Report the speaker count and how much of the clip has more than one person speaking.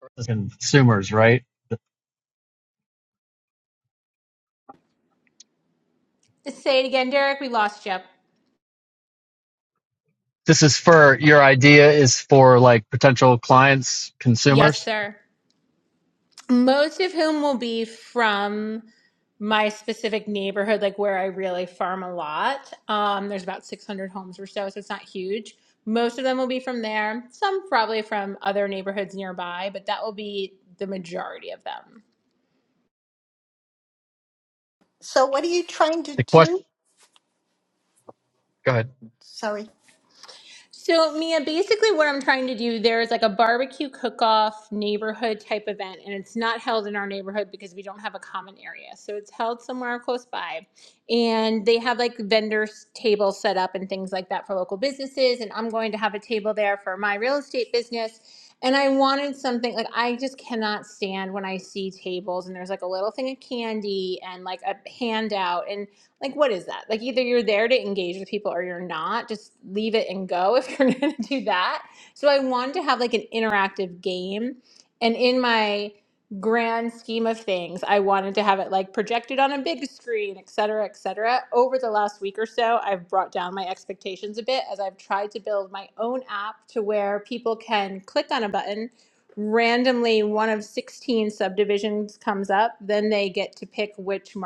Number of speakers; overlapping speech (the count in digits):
3, about 1%